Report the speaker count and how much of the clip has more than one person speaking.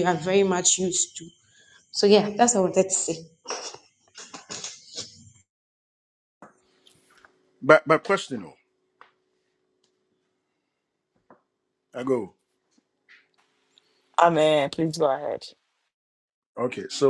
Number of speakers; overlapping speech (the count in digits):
3, no overlap